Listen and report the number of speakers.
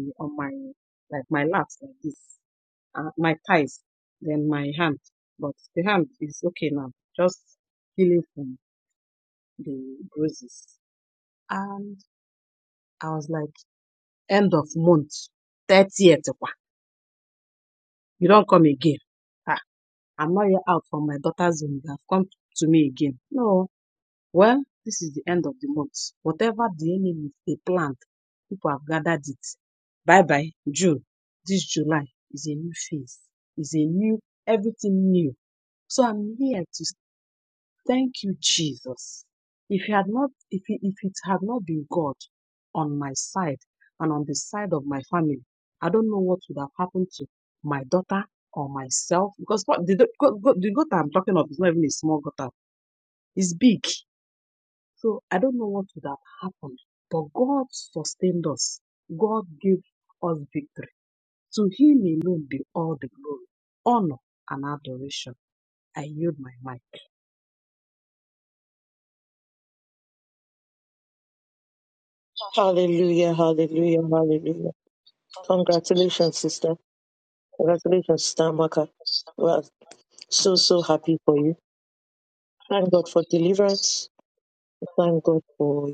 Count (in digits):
2